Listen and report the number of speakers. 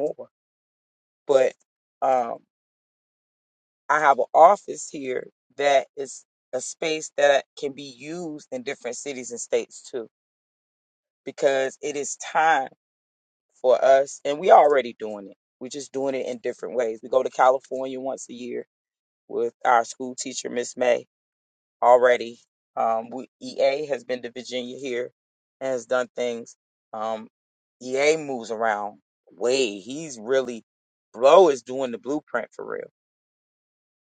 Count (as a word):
one